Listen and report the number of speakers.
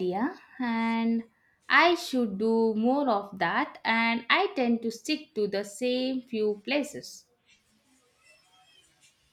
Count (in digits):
1